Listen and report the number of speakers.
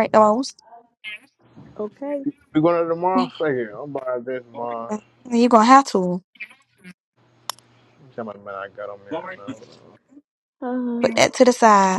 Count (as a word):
three